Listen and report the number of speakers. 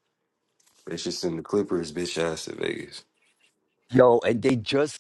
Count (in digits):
2